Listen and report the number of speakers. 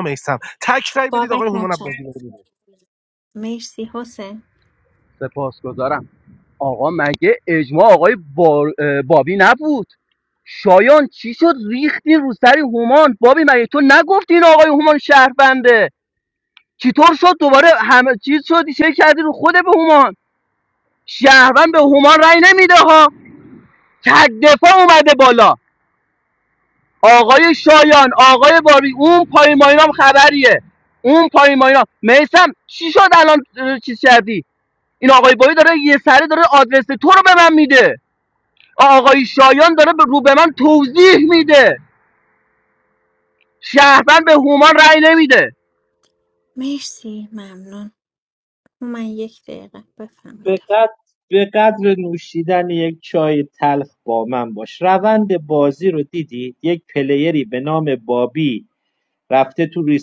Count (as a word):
four